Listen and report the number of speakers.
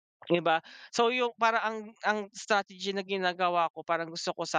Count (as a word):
one